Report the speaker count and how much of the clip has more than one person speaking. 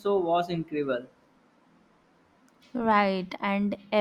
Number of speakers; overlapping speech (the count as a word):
two, no overlap